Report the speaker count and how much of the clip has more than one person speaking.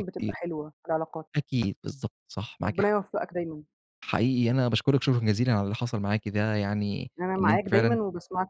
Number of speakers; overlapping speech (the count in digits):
2, about 14%